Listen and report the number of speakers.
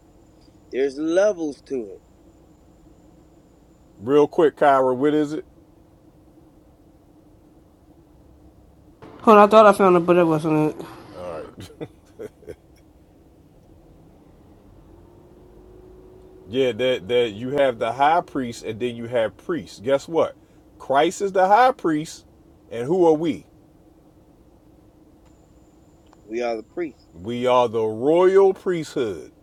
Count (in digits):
3